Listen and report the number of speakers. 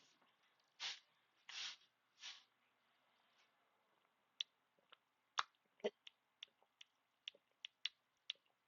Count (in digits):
0